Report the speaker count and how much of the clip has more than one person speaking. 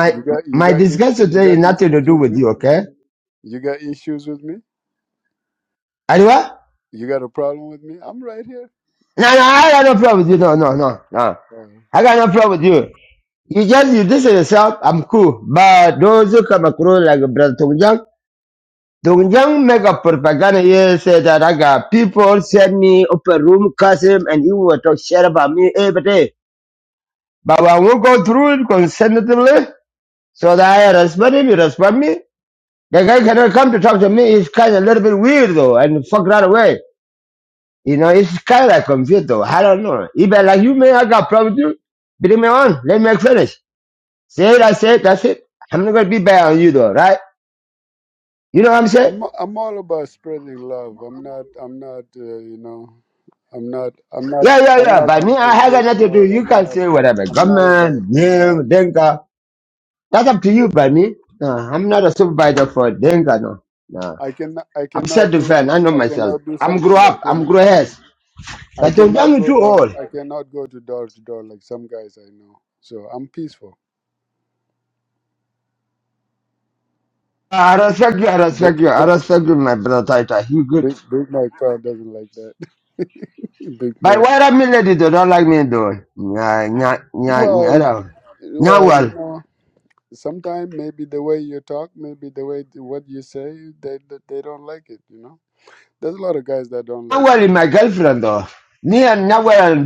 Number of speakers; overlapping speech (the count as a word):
two, about 12%